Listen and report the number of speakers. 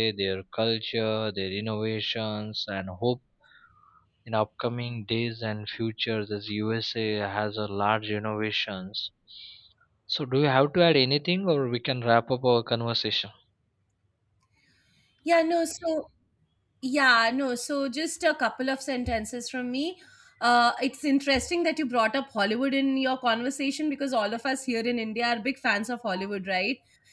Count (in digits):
2